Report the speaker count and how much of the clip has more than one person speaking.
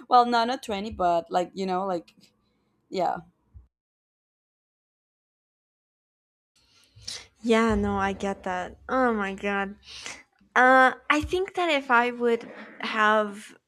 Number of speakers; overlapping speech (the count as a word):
two, no overlap